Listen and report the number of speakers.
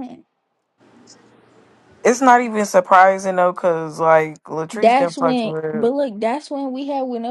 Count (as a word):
two